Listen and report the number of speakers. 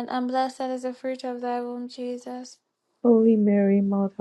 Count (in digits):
2